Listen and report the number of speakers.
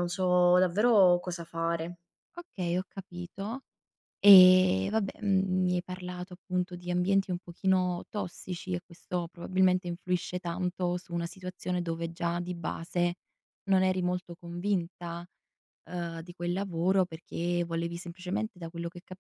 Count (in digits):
2